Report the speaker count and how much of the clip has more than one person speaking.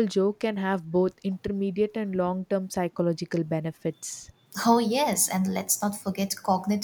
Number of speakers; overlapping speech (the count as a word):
two, no overlap